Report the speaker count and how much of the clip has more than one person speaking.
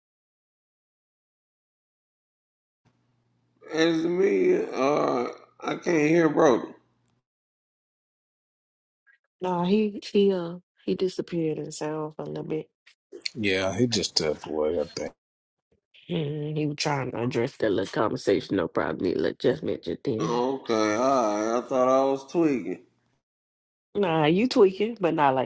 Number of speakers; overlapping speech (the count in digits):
3, about 1%